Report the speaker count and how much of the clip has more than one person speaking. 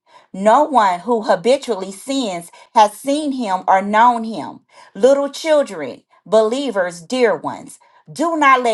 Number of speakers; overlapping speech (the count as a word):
one, no overlap